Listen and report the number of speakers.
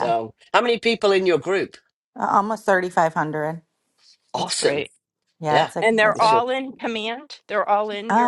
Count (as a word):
three